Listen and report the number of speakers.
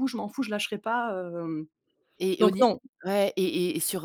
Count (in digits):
2